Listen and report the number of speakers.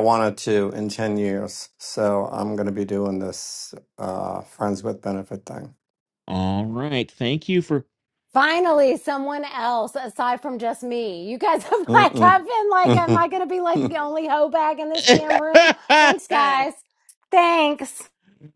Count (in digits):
3